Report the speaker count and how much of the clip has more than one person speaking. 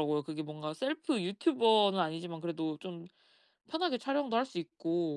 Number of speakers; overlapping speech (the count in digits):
1, no overlap